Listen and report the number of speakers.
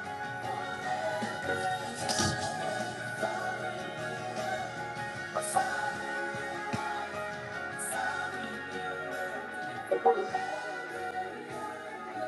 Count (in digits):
0